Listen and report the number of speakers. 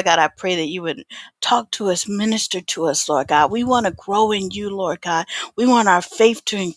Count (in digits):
1